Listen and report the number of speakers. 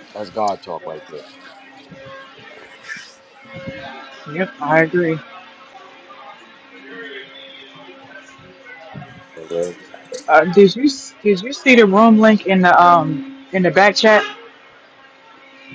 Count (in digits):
2